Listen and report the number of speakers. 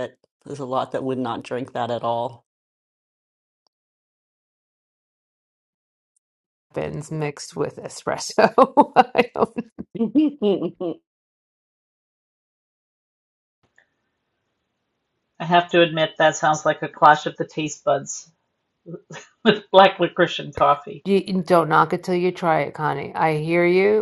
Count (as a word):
three